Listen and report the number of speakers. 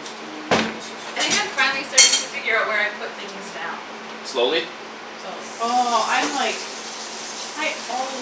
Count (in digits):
3